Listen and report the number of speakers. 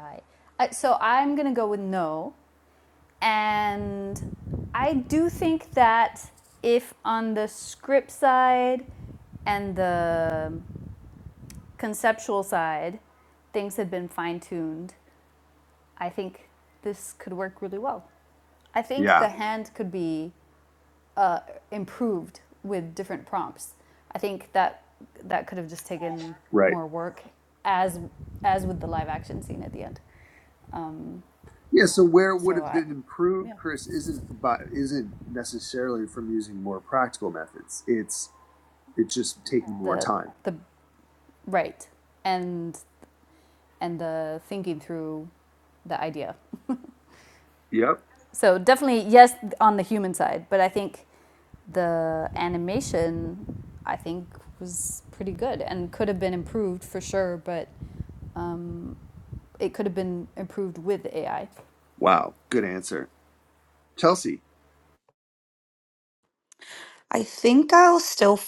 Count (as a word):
three